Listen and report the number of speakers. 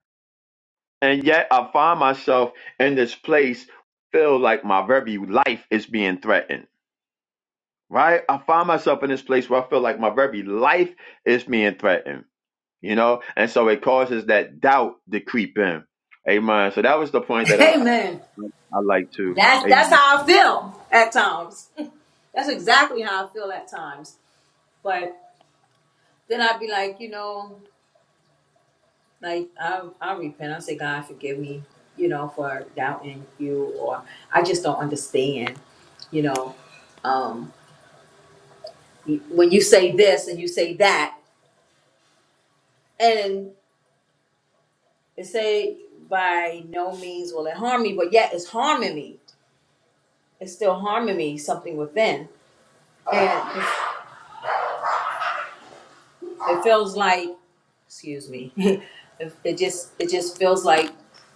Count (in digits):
2